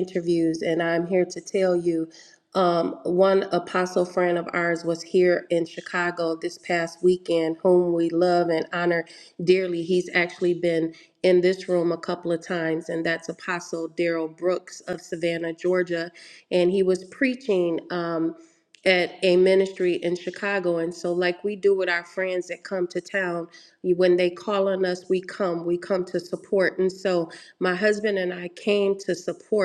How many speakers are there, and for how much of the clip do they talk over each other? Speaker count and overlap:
one, no overlap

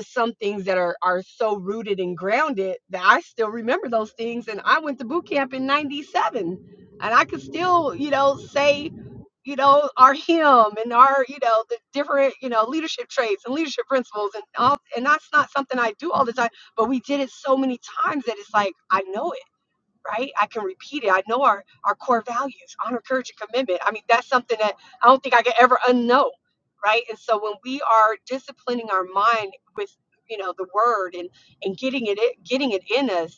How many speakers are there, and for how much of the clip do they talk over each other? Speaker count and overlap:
one, no overlap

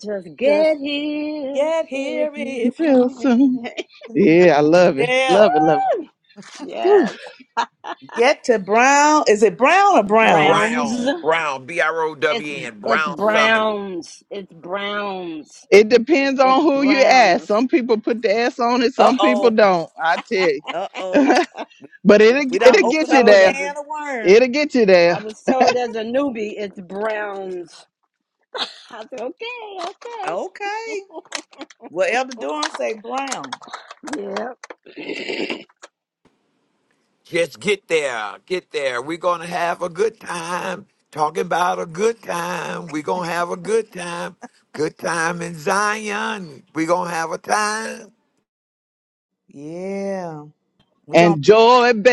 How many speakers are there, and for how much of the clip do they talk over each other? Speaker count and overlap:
four, about 17%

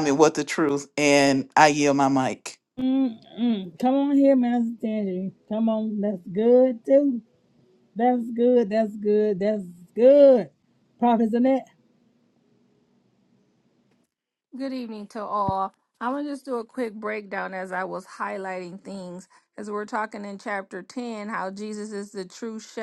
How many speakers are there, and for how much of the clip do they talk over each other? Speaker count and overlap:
three, no overlap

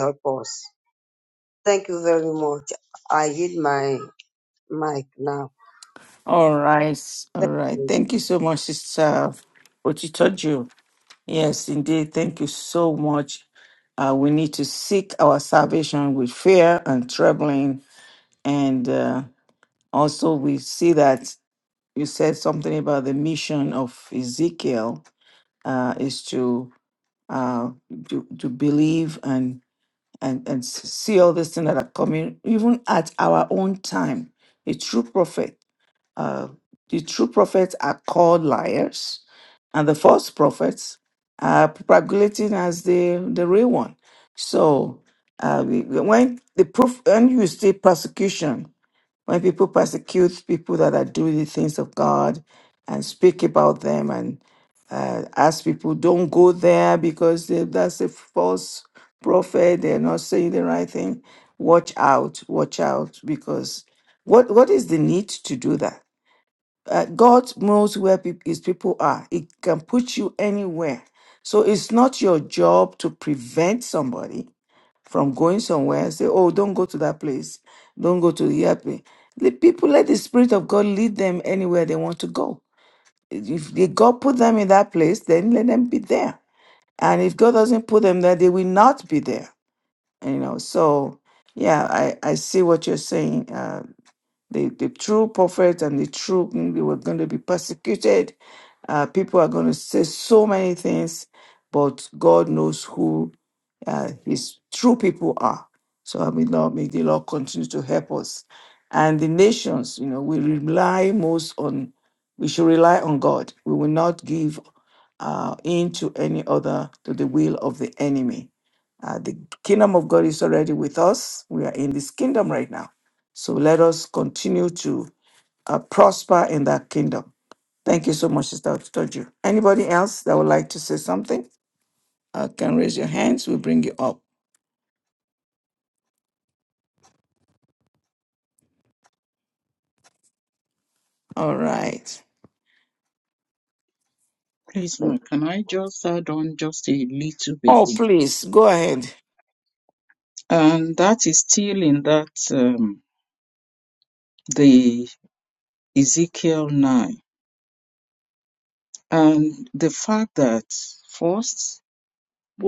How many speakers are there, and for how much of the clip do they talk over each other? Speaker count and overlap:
three, under 1%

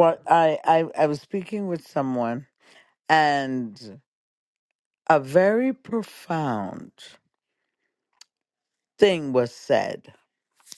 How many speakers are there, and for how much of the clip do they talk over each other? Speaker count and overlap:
one, no overlap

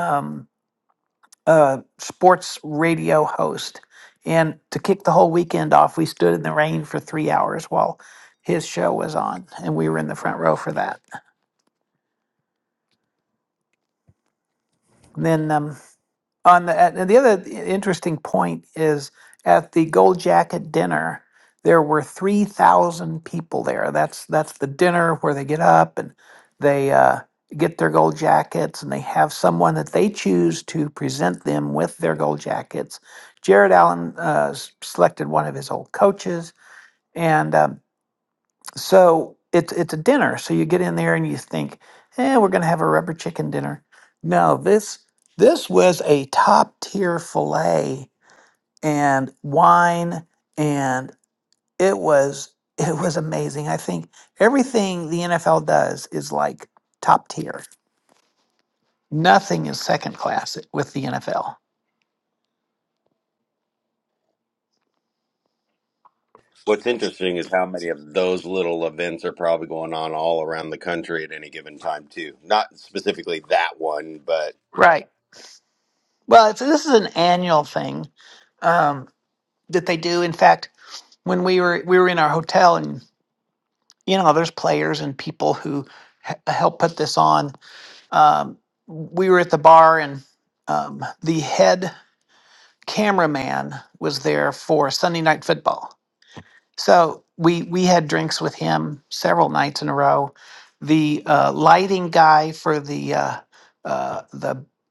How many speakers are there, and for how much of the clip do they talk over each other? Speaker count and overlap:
two, no overlap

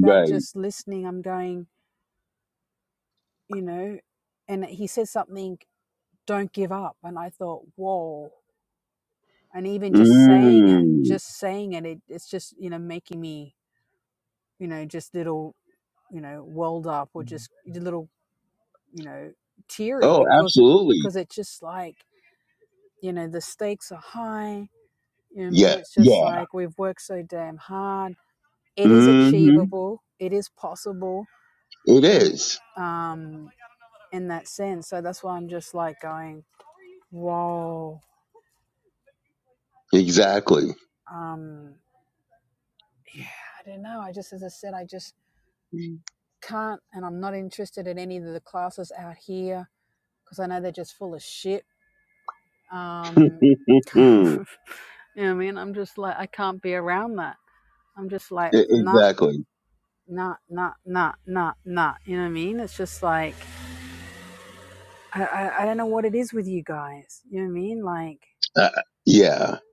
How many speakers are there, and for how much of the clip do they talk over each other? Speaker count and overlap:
two, about 7%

